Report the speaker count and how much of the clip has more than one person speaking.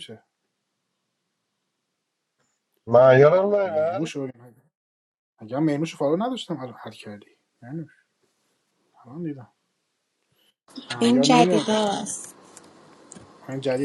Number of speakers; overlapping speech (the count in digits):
3, about 8%